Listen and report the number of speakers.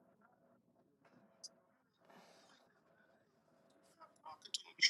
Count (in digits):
0